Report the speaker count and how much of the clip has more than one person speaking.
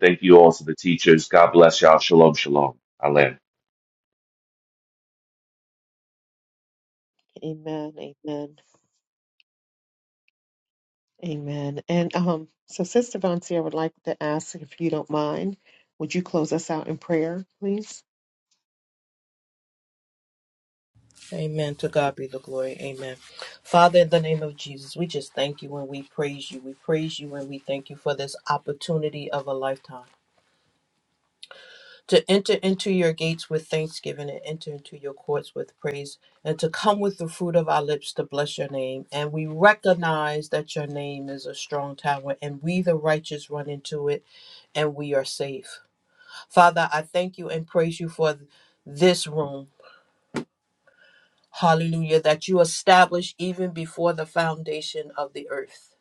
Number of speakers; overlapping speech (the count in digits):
3, no overlap